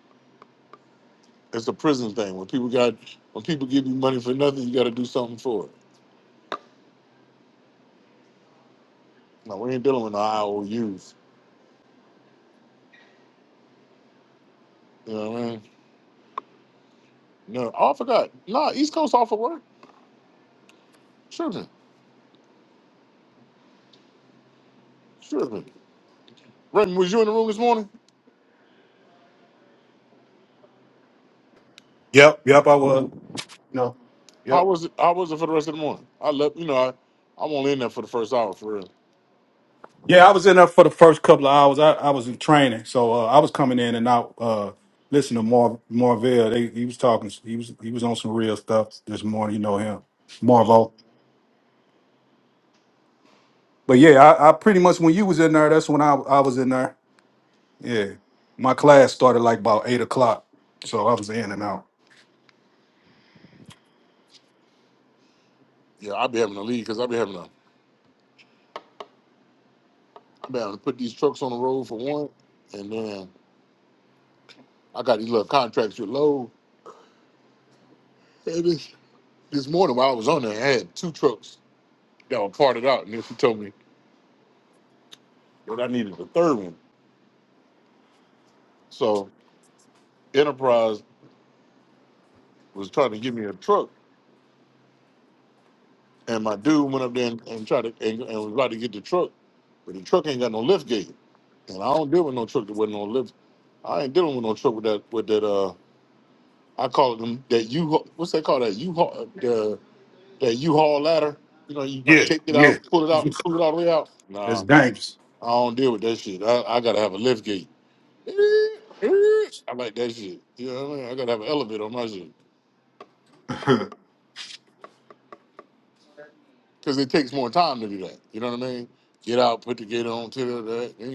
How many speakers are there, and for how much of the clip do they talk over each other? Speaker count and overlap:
2, about 1%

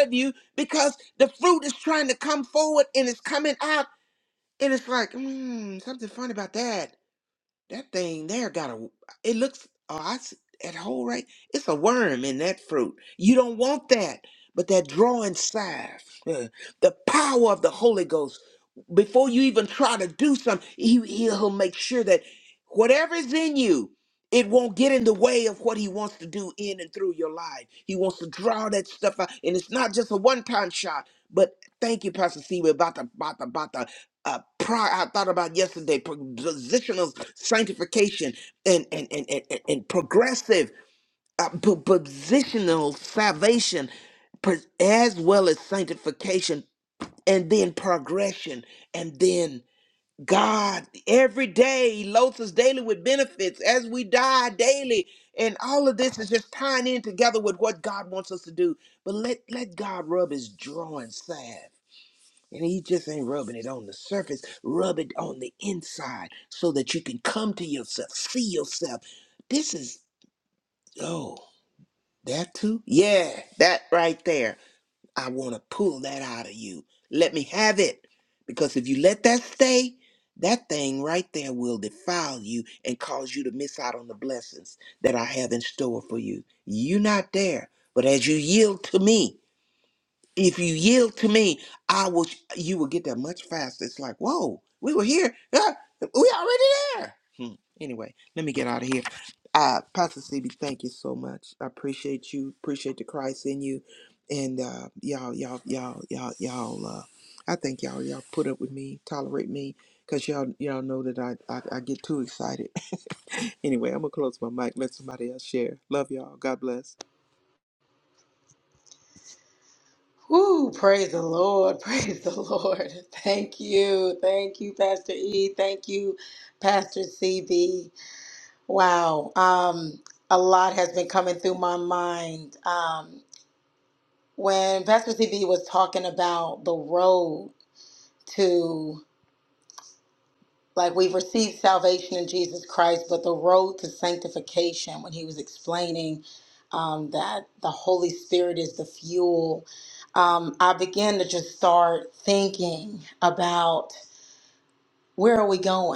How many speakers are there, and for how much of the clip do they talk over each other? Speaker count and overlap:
2, no overlap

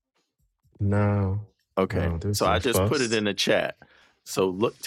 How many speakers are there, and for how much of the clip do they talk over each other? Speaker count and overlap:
2, about 26%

